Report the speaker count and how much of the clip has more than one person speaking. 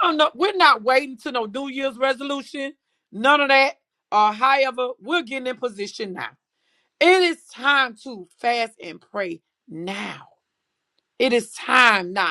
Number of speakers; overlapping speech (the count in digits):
1, no overlap